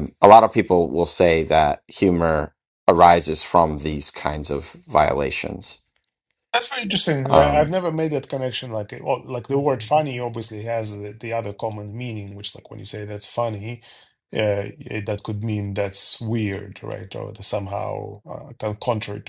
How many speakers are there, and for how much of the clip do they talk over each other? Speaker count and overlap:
2, about 2%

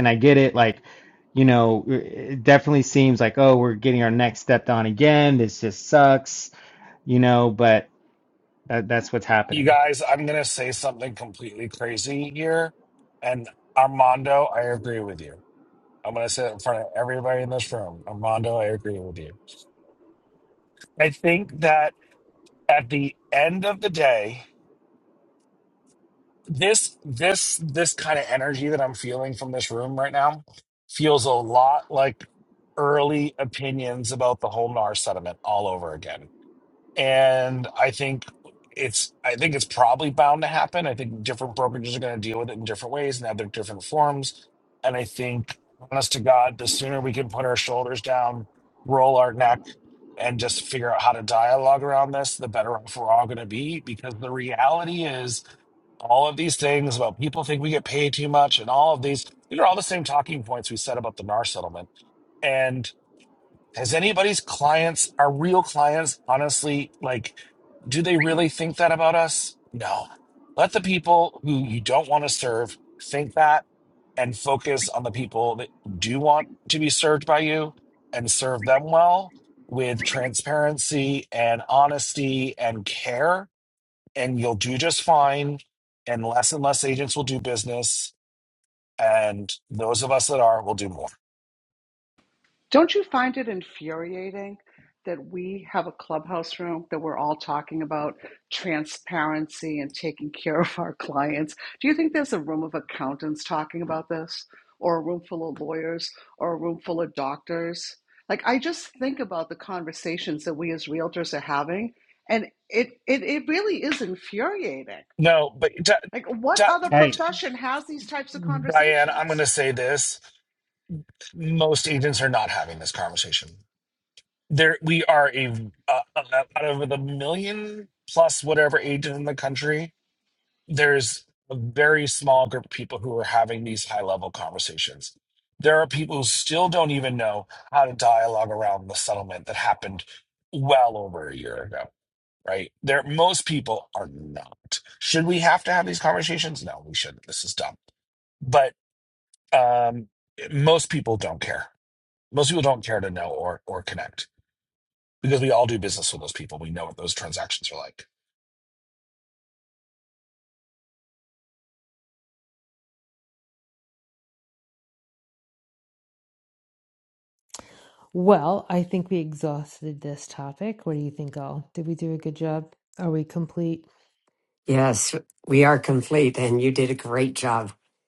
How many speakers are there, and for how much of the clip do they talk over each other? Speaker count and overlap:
5, about 1%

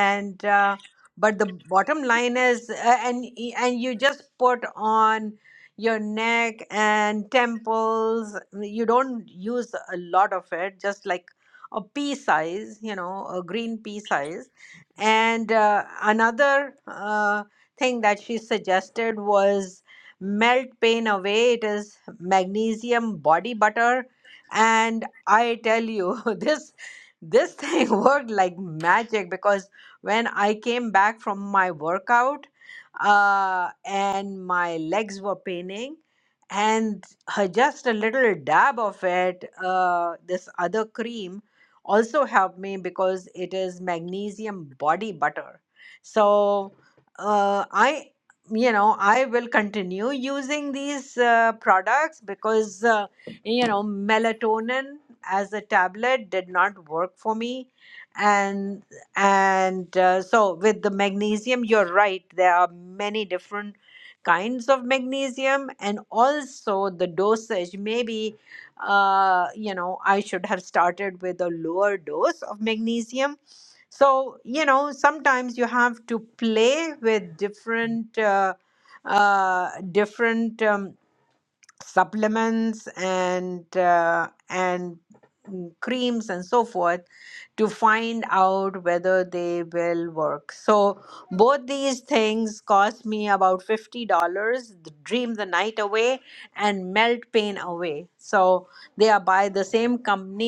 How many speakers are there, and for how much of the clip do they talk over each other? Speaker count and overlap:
1, no overlap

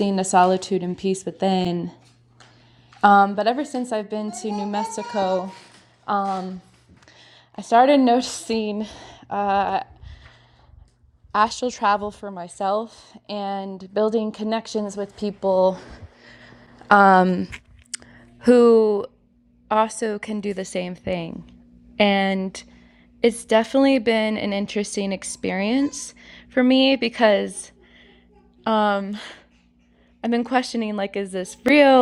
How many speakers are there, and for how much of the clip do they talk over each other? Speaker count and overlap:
1, no overlap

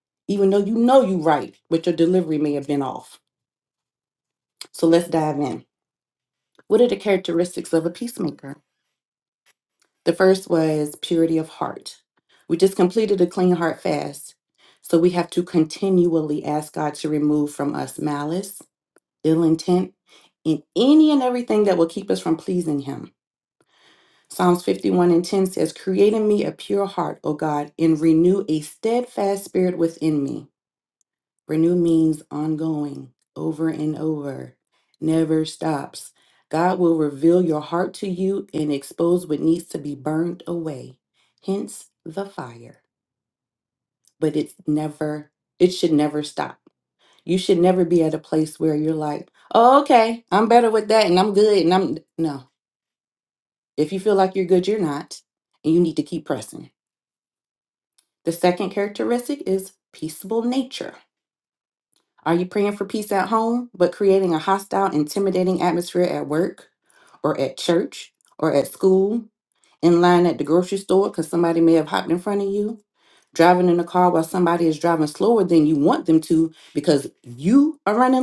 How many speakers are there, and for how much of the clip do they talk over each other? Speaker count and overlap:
1, no overlap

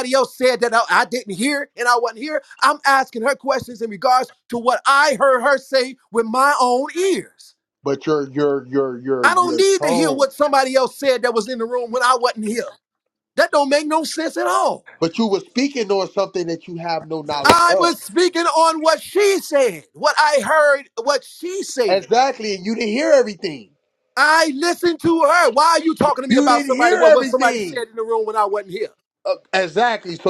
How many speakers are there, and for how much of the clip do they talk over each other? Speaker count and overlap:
2, about 10%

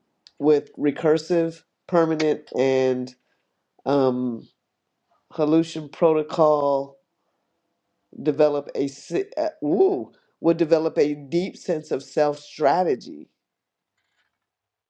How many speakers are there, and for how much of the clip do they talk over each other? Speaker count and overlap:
1, no overlap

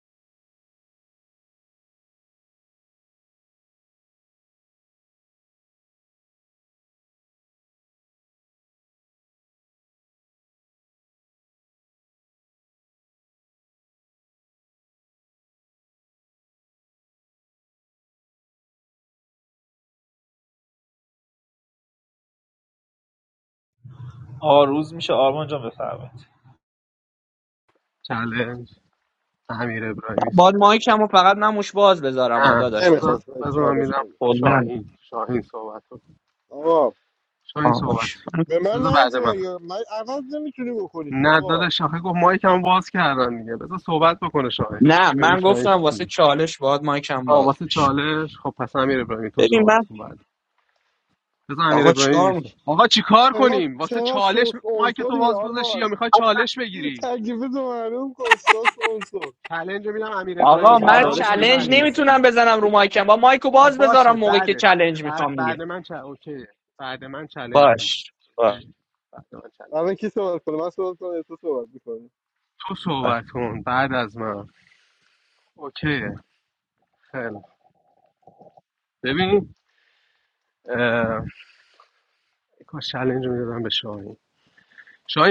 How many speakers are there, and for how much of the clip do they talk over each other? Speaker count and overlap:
4, about 16%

